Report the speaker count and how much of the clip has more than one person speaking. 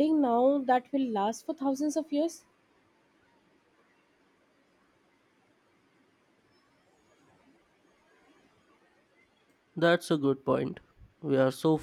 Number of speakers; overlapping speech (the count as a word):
two, no overlap